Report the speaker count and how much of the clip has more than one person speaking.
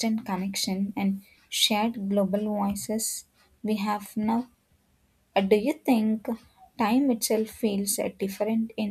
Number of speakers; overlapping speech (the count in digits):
1, no overlap